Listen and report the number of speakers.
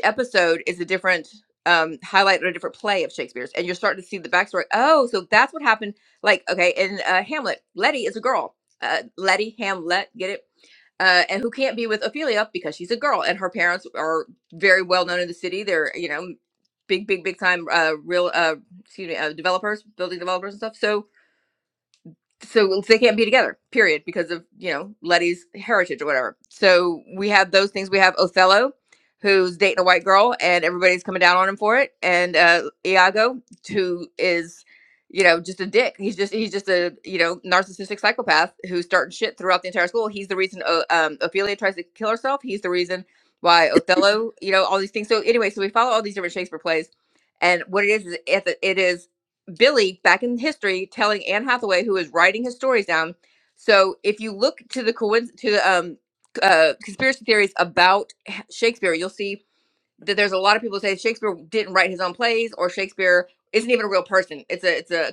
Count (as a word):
one